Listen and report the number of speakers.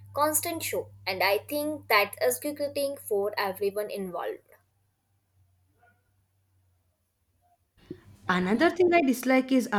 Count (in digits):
2